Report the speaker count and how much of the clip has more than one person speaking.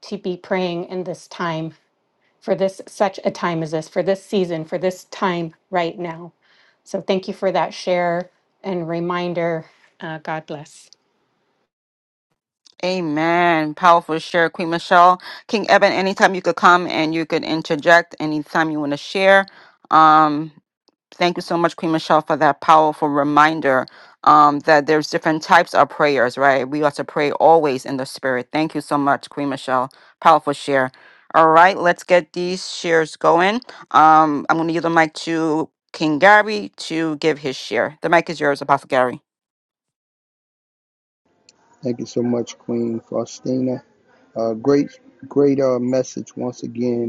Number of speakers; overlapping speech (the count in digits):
3, no overlap